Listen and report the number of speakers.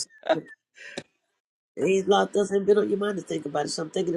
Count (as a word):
one